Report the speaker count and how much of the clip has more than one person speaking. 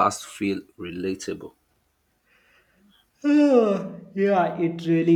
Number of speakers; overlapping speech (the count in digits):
2, no overlap